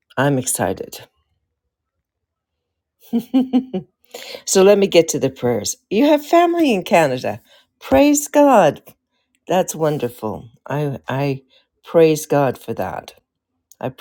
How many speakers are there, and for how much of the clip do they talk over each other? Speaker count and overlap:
1, no overlap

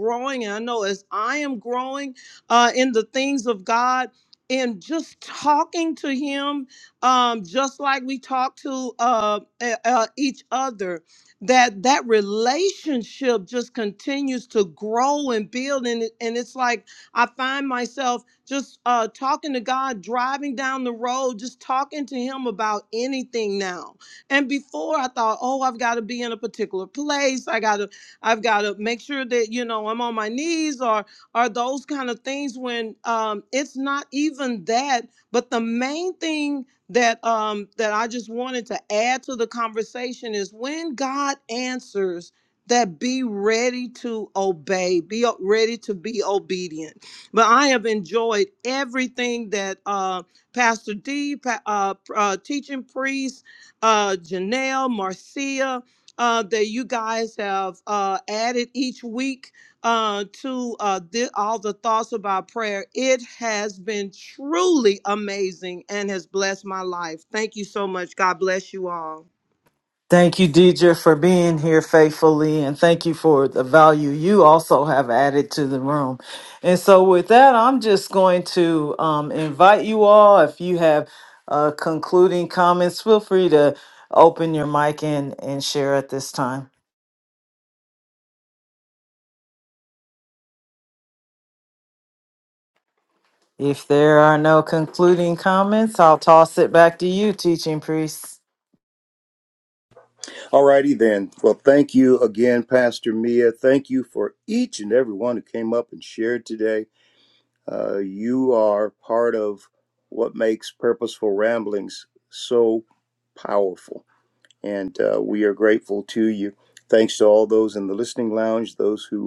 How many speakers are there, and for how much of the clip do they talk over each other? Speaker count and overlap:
3, no overlap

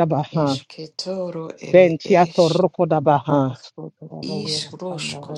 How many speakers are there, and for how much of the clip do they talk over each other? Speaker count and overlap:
3, about 37%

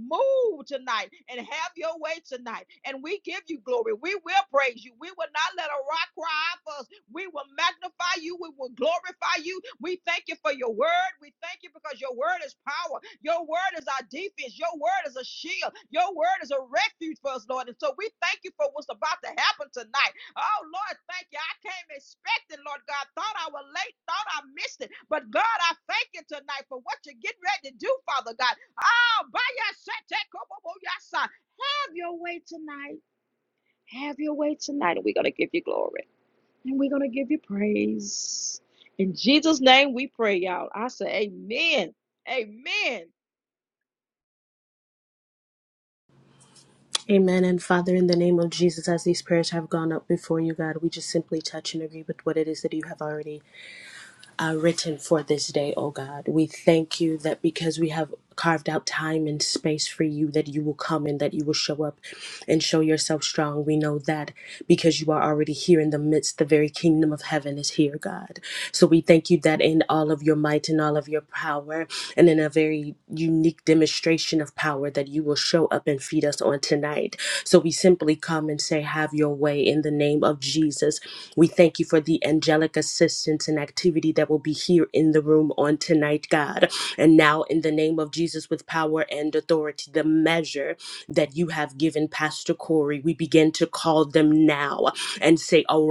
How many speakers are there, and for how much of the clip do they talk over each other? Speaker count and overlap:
2, no overlap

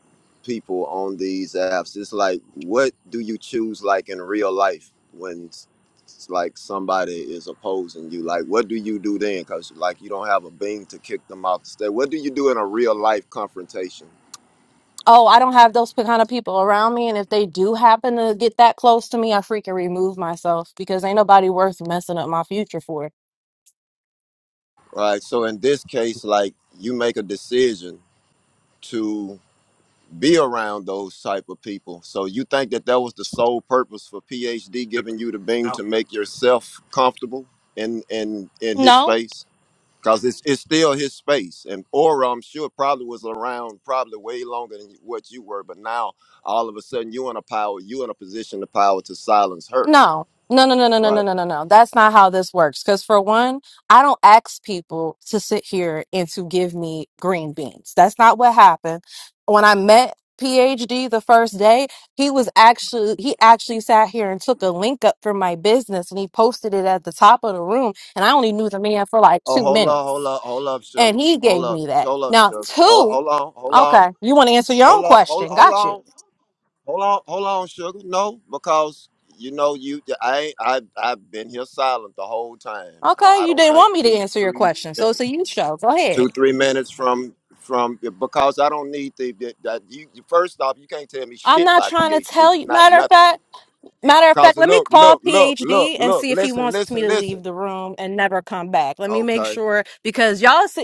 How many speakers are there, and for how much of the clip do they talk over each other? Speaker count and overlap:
2, about 12%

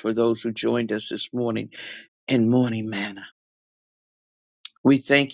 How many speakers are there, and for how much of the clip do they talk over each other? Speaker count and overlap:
1, no overlap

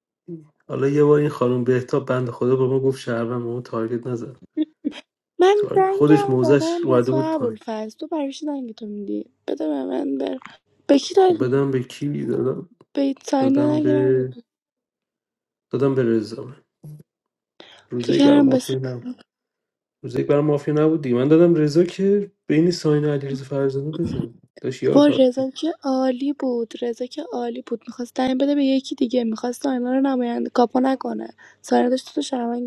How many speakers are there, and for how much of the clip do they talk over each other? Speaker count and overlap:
2, about 13%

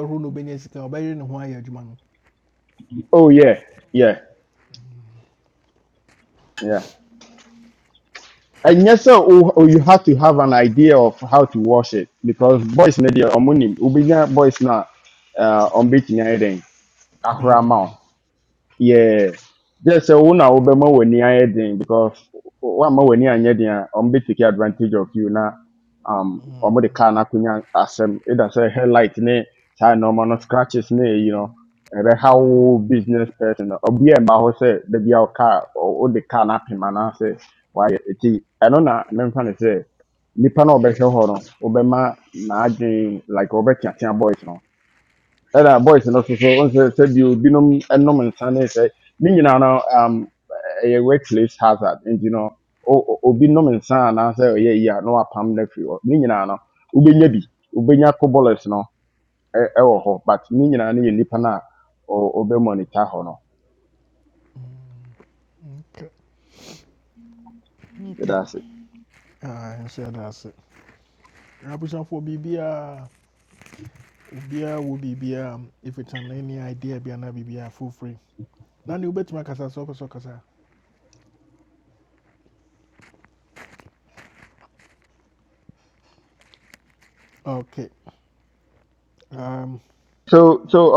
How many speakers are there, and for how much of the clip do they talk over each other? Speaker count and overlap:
2, about 2%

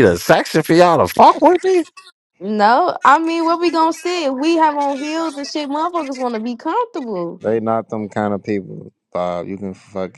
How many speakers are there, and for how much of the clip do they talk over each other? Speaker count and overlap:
3, no overlap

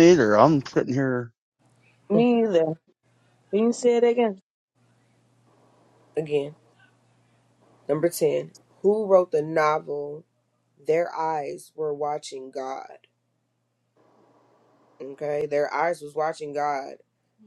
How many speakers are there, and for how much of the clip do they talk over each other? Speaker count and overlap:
3, no overlap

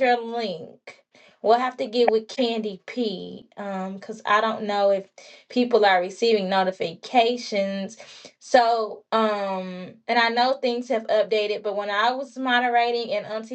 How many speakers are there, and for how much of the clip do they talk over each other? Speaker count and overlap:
1, no overlap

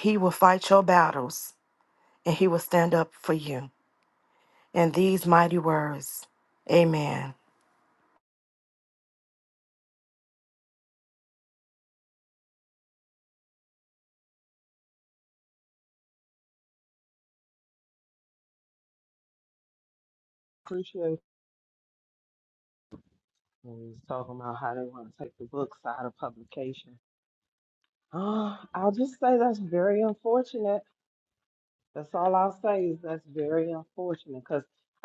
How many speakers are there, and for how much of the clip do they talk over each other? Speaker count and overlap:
2, no overlap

